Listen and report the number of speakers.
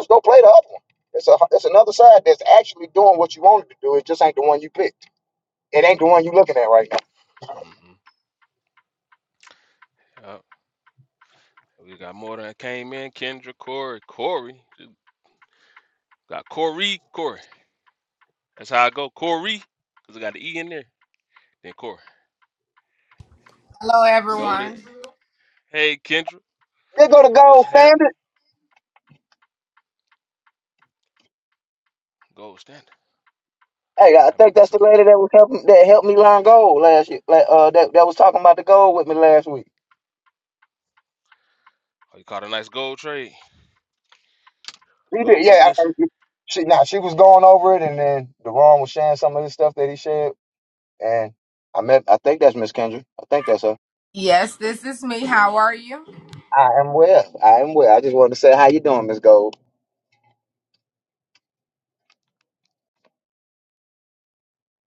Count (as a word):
three